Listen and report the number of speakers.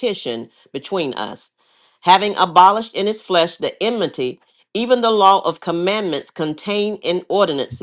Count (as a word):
one